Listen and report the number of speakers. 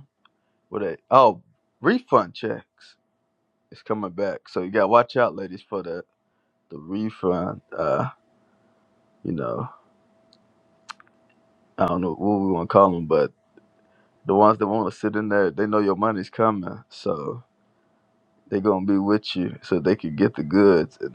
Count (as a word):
one